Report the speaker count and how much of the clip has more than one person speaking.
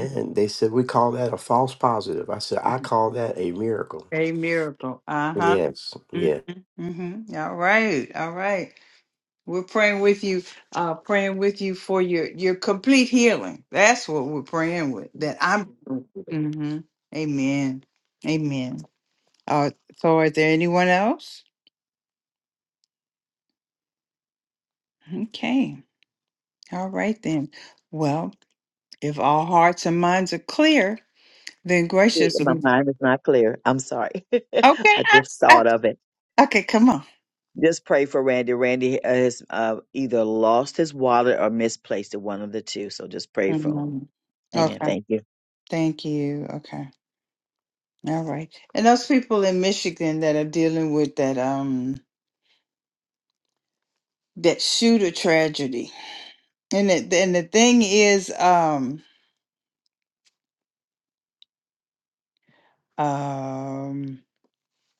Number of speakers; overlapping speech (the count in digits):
3, about 4%